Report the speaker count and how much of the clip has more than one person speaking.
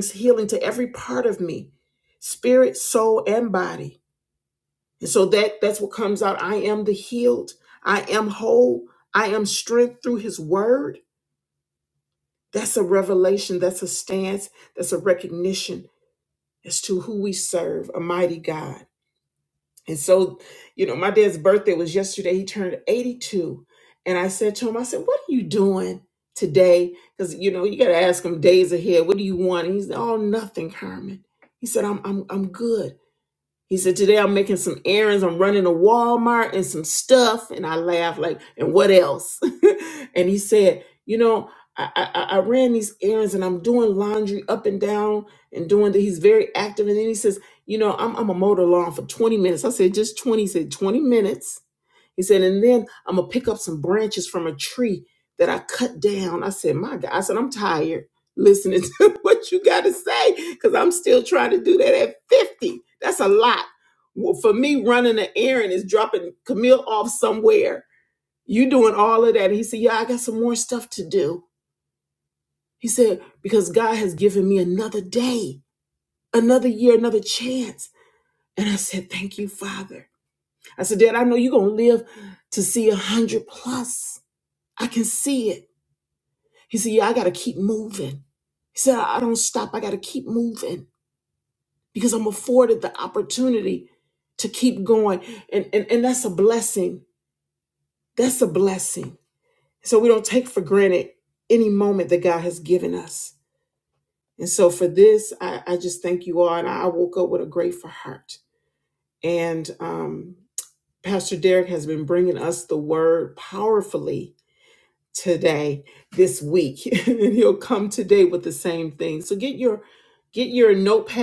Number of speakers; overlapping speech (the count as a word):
one, no overlap